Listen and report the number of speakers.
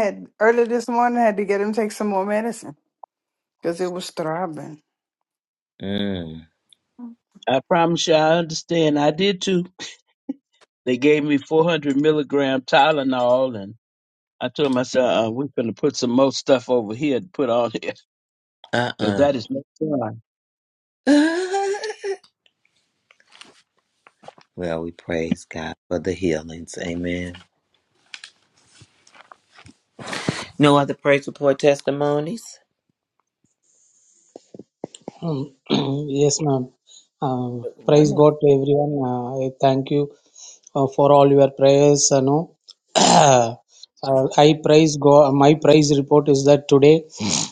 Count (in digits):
4